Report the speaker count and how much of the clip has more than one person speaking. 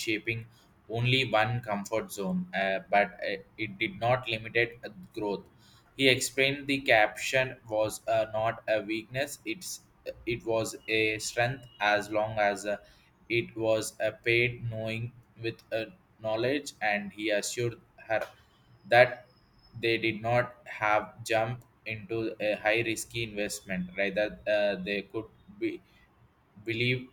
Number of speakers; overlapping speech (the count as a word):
one, no overlap